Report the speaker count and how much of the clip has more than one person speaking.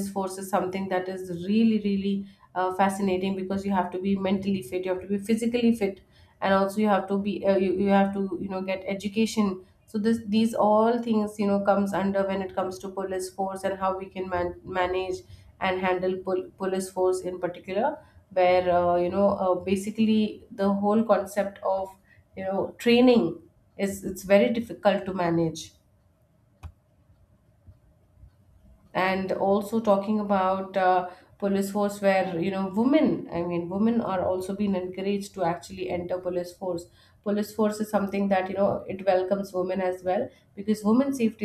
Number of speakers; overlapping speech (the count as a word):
one, no overlap